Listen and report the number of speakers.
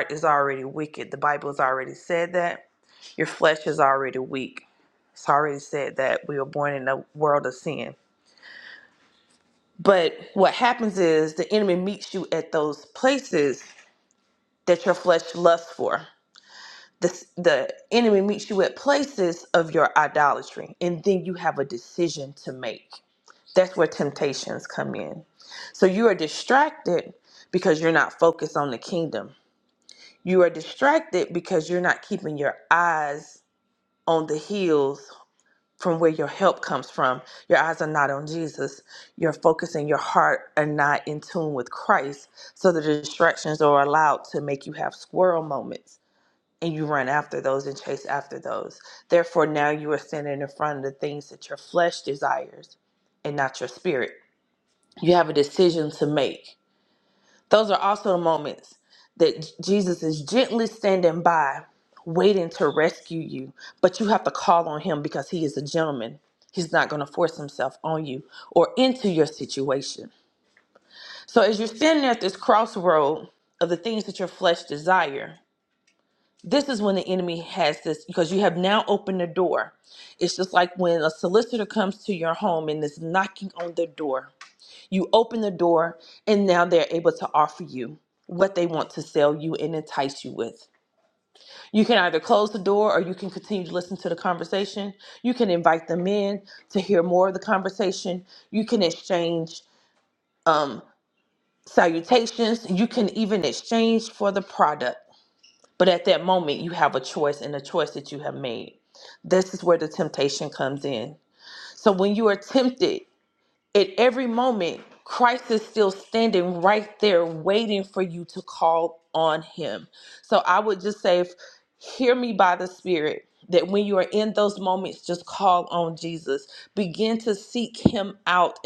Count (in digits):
1